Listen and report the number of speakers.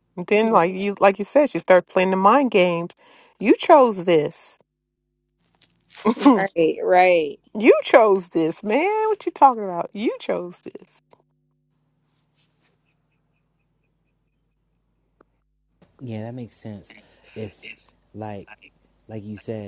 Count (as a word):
three